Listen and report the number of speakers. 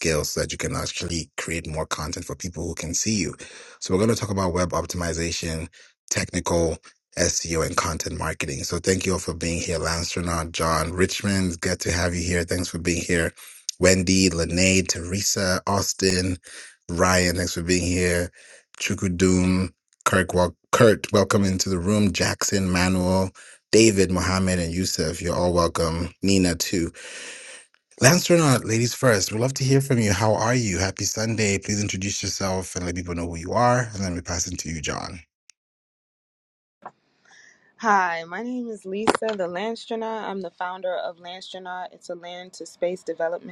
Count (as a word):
two